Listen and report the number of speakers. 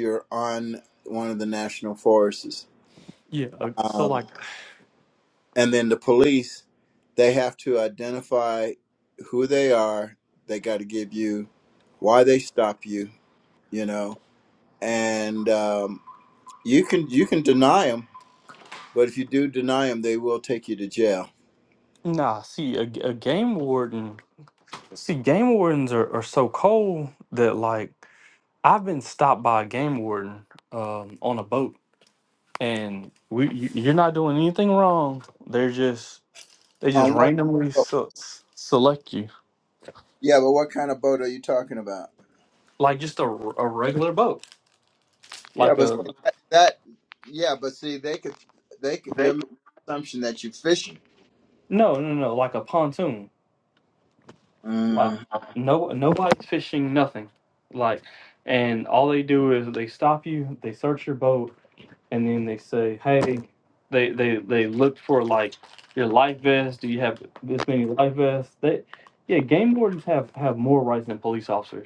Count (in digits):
2